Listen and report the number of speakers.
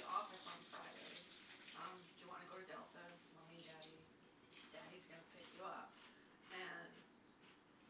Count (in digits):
1